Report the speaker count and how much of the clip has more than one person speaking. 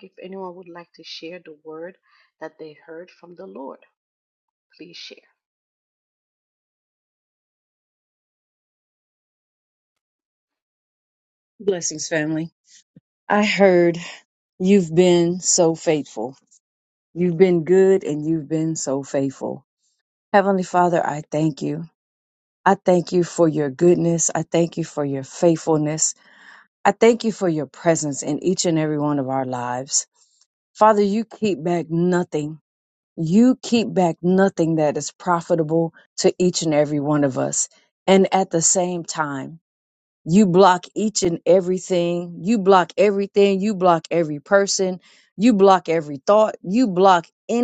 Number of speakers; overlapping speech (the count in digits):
2, no overlap